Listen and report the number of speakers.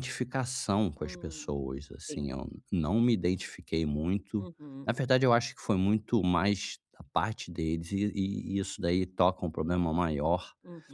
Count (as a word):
two